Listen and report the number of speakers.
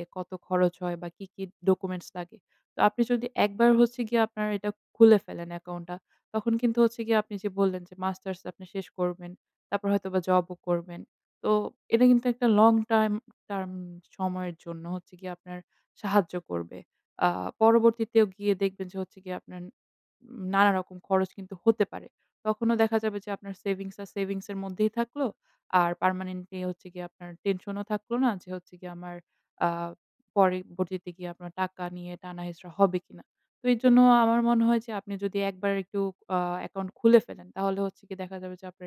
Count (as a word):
one